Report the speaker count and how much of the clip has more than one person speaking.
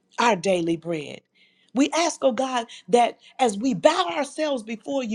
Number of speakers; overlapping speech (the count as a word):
one, no overlap